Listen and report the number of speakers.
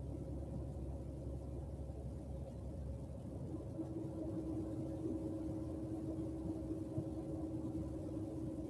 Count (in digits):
0